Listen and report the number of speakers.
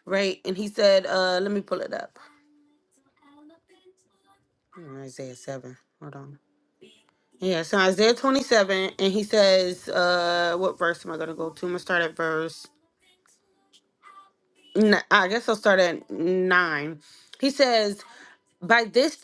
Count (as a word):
one